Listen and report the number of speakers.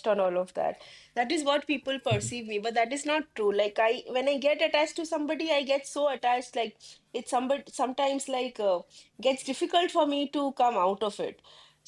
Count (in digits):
1